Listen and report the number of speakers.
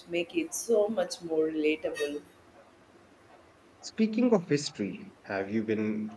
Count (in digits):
2